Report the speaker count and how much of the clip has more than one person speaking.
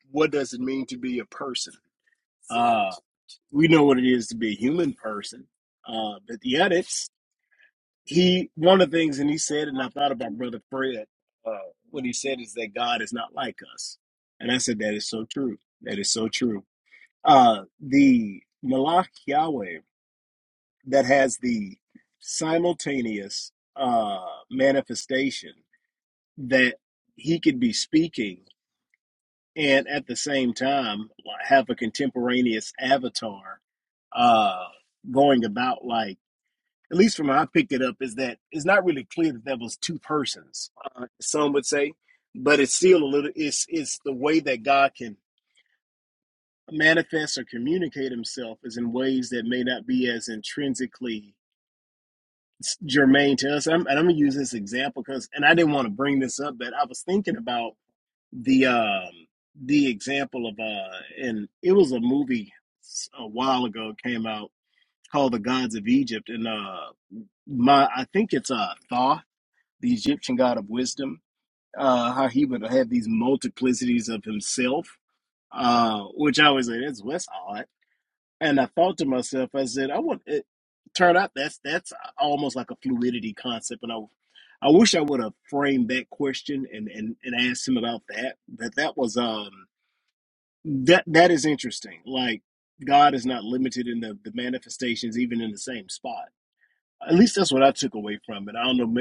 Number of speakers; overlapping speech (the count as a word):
one, no overlap